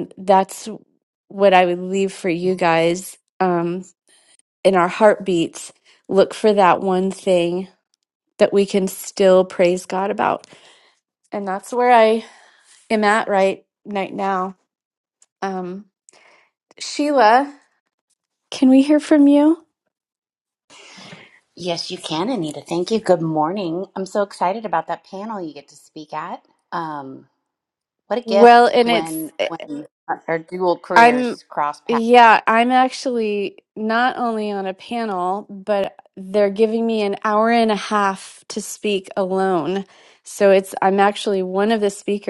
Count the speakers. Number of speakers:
2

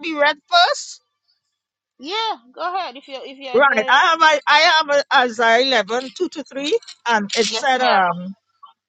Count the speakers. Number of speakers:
2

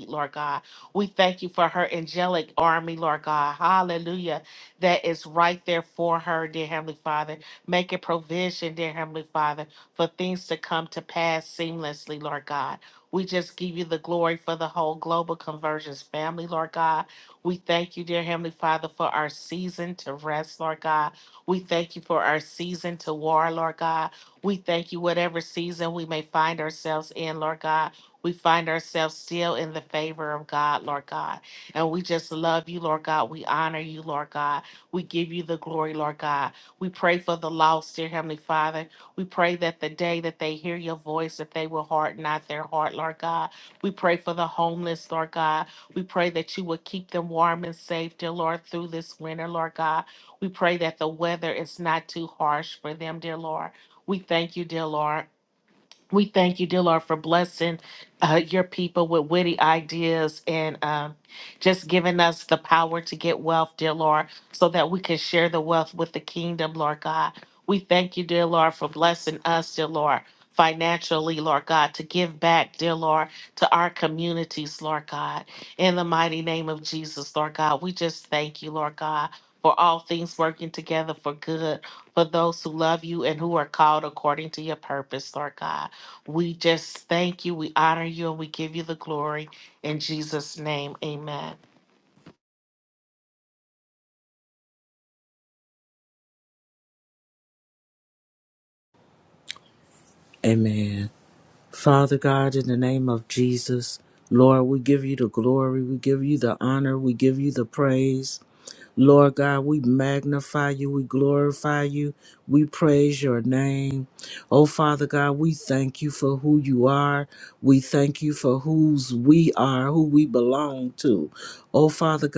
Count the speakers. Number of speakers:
2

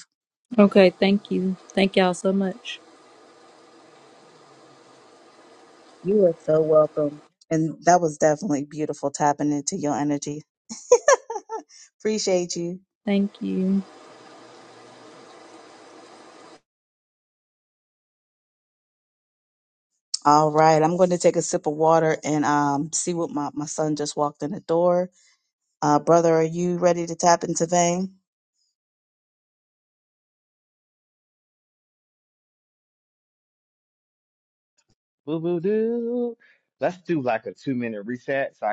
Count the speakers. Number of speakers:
3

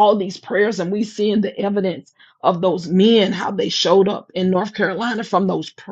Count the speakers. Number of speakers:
1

